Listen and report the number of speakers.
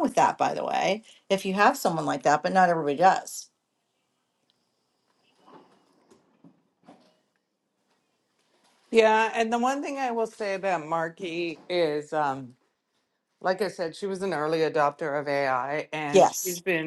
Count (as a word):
two